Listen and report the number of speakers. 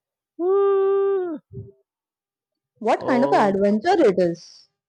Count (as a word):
two